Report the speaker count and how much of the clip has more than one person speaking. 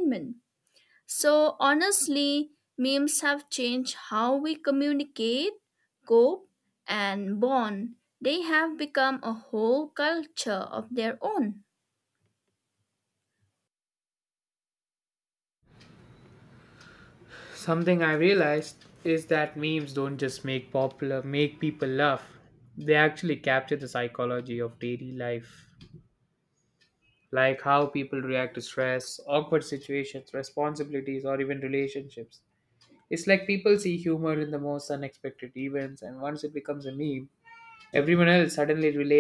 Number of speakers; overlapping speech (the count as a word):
two, no overlap